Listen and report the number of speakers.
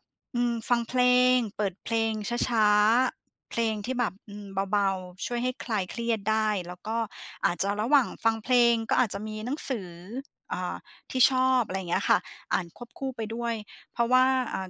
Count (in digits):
1